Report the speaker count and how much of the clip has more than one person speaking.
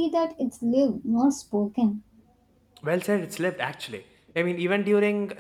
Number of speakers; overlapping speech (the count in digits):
2, no overlap